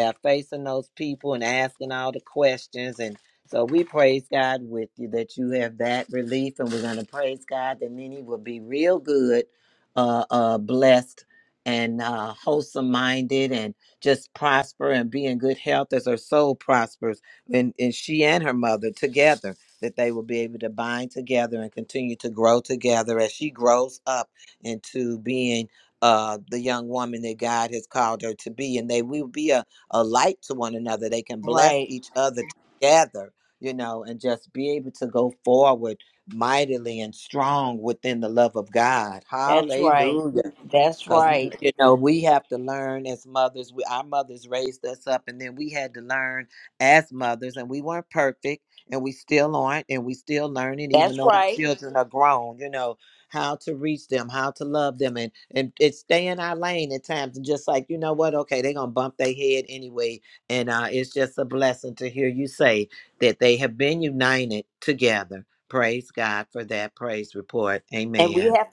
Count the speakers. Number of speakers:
two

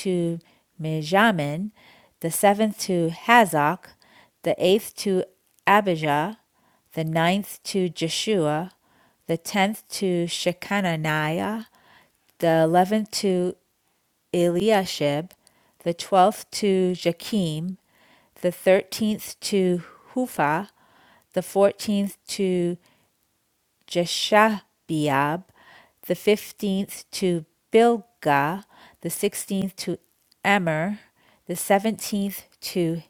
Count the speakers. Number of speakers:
one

